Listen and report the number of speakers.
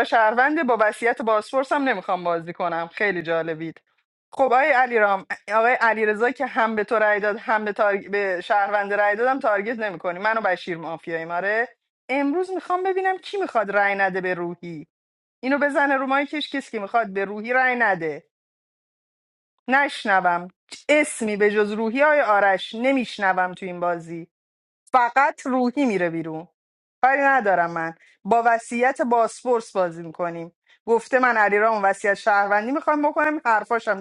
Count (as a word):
one